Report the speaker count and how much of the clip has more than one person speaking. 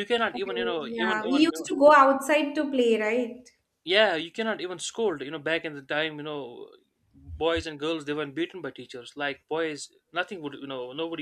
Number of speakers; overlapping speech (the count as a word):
two, about 8%